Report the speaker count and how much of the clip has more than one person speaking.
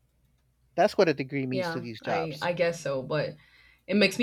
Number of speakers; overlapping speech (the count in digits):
2, about 19%